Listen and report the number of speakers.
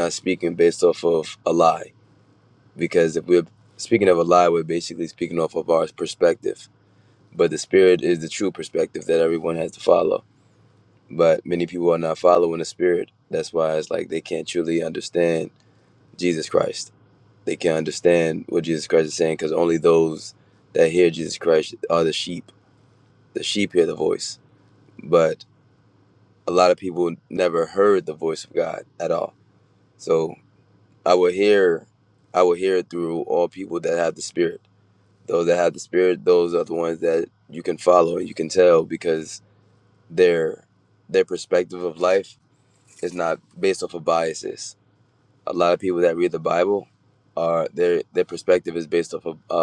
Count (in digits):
1